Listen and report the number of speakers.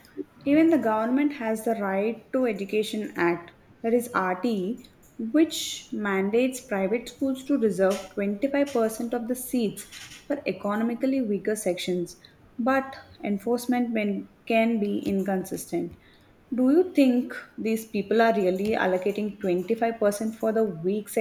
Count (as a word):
one